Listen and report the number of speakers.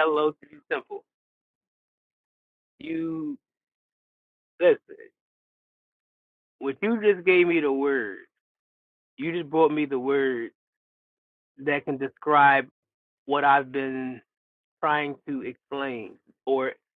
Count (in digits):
1